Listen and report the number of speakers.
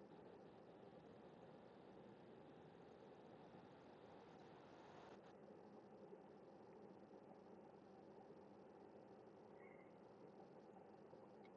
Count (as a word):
zero